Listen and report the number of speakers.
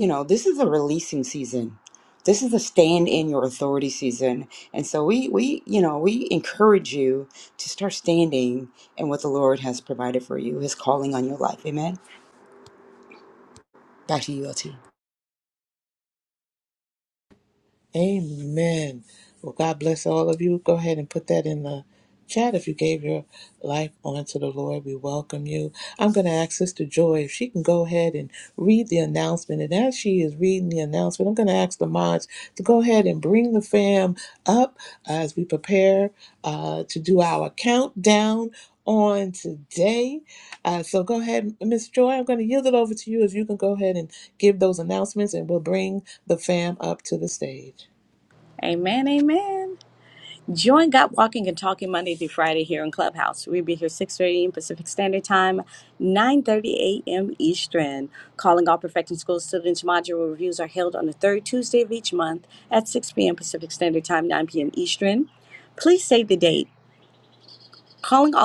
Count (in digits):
3